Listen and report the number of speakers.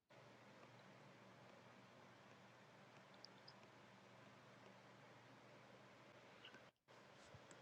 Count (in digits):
0